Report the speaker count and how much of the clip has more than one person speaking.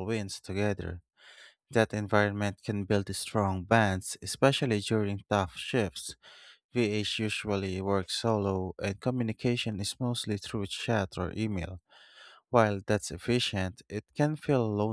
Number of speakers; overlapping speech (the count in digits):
1, no overlap